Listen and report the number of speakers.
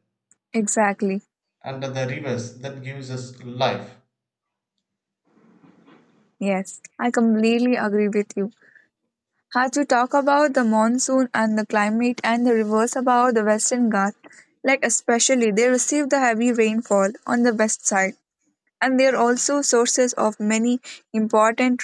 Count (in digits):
2